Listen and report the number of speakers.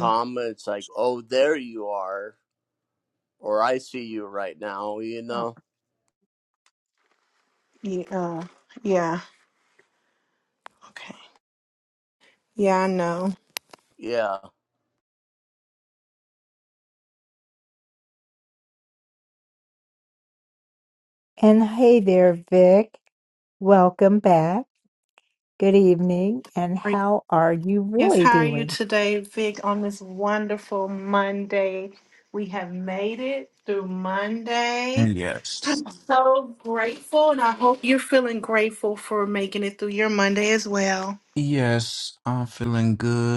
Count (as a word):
four